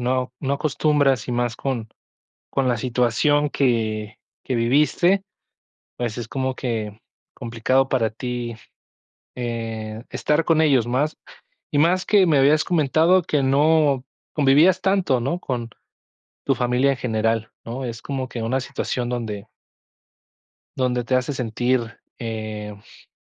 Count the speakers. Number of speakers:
1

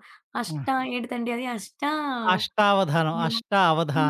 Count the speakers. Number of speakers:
2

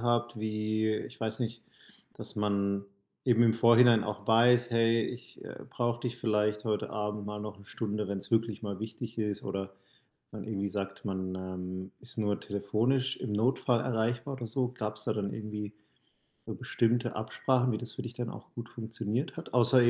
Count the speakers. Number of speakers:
1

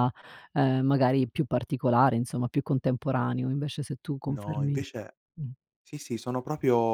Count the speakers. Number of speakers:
2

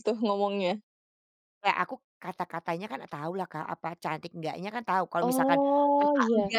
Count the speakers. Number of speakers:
2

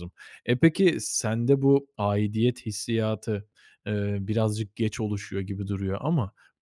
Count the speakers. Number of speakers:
1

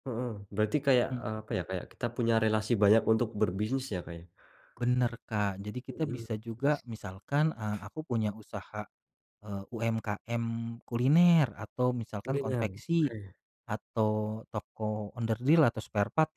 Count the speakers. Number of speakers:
2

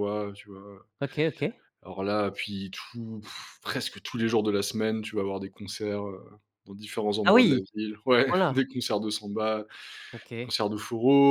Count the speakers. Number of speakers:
2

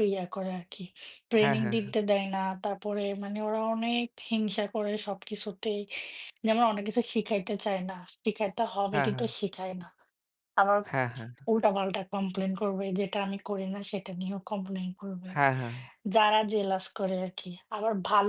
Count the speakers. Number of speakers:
2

